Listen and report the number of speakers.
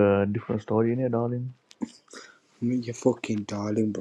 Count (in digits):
2